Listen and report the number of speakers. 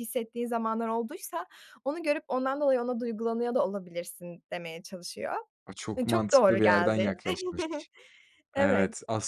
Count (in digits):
2